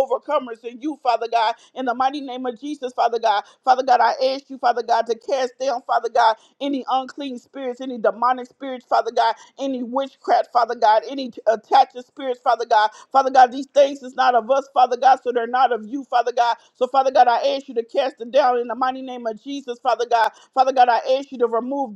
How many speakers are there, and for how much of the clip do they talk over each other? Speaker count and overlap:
one, no overlap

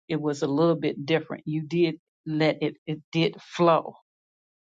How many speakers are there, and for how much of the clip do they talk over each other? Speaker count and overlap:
one, no overlap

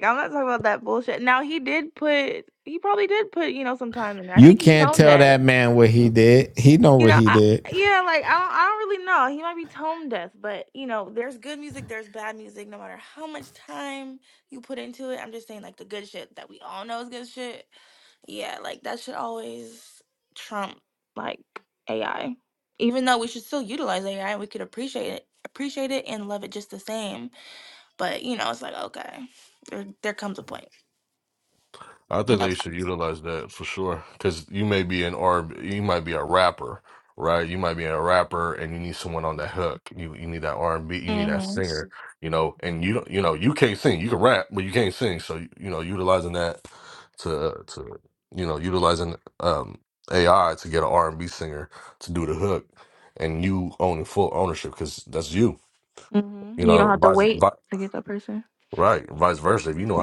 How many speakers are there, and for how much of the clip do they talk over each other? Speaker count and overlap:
three, about 6%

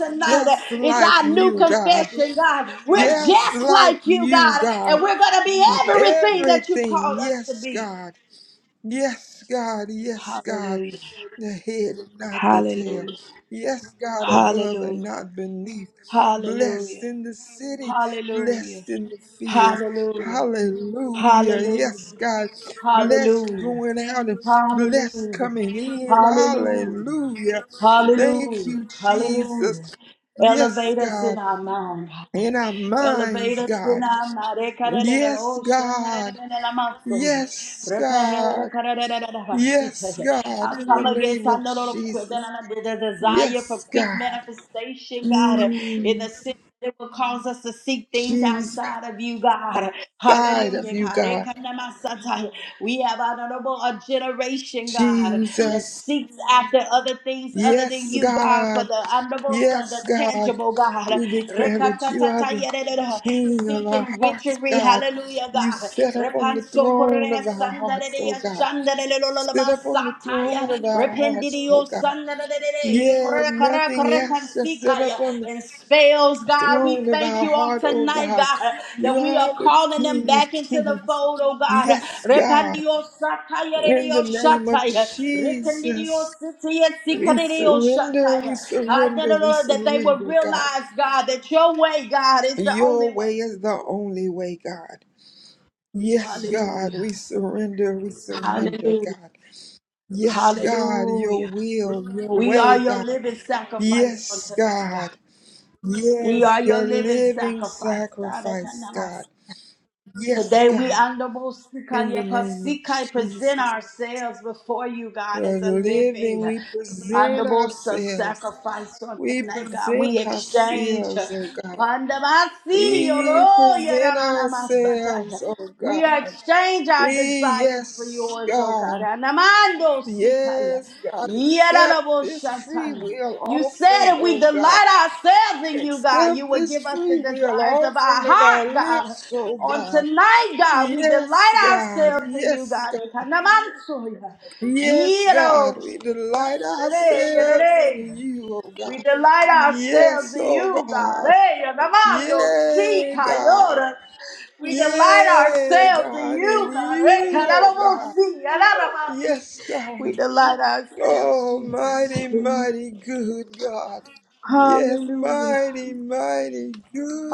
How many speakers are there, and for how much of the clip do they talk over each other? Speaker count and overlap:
two, about 52%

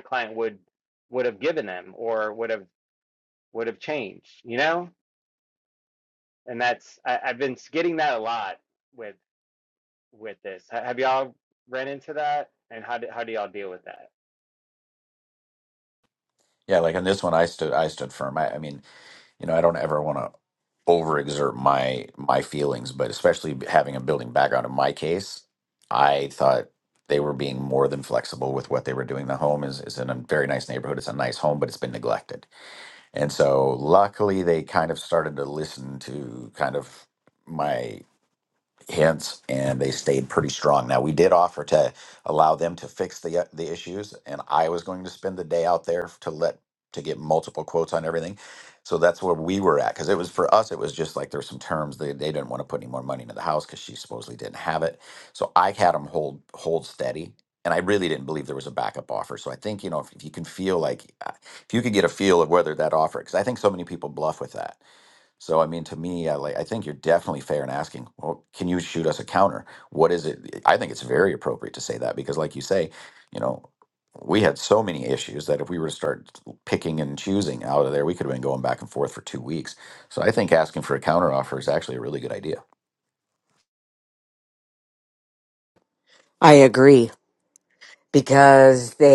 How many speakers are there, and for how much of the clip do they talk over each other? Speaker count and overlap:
three, no overlap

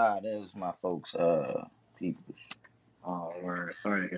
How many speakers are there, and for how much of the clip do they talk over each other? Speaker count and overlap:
two, no overlap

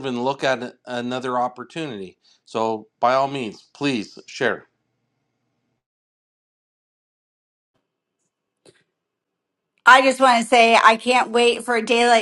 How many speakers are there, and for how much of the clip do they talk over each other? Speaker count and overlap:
two, no overlap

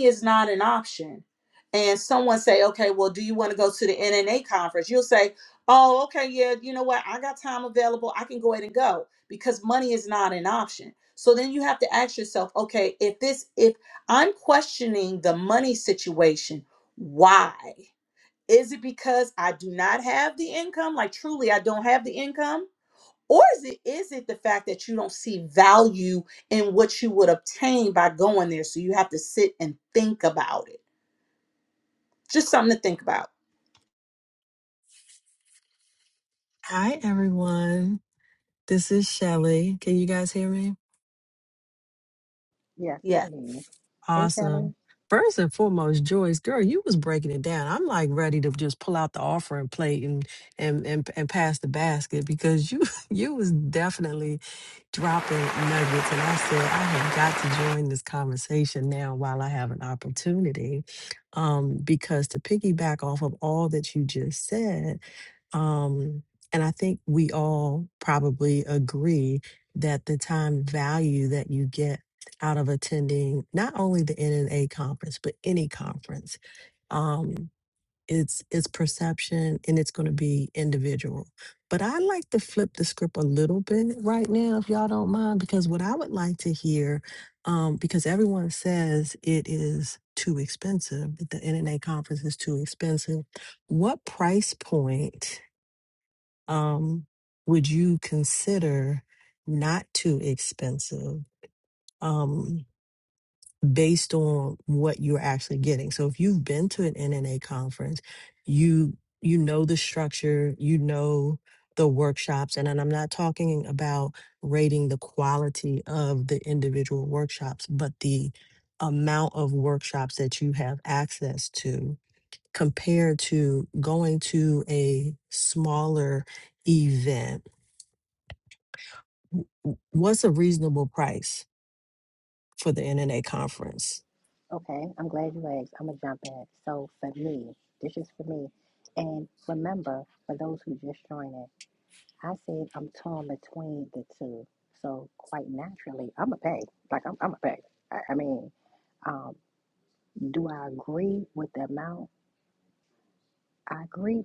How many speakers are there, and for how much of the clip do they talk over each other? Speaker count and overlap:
three, under 1%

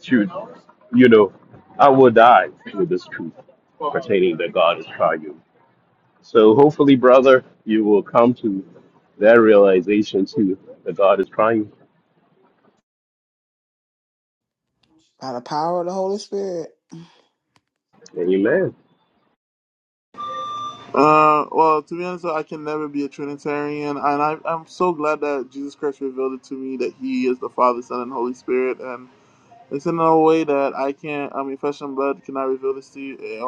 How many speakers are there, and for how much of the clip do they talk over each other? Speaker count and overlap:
three, no overlap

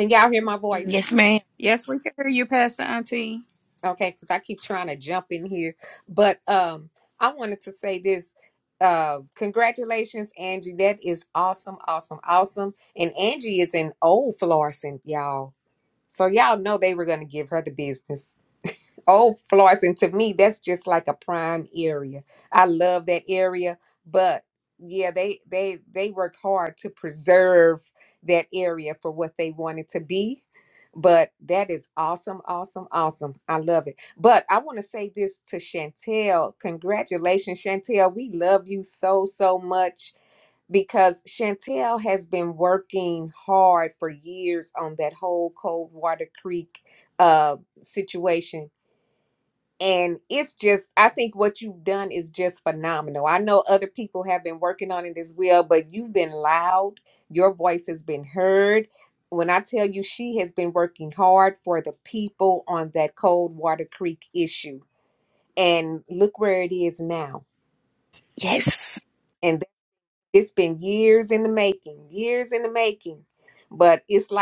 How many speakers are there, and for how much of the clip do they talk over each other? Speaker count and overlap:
three, about 1%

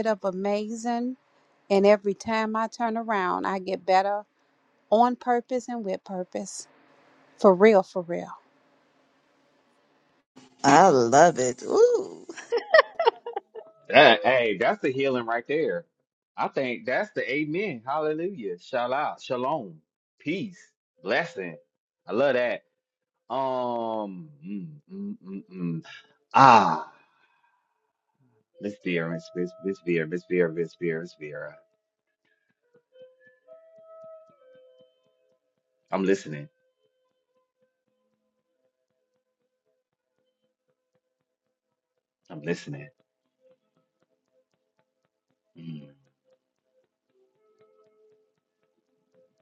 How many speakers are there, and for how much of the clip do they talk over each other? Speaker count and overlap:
three, no overlap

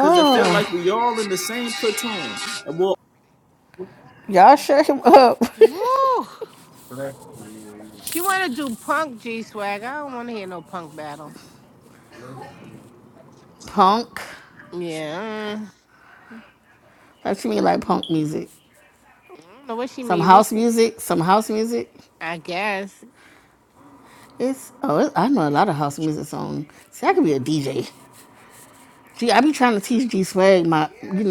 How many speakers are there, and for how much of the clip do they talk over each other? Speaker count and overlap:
four, about 3%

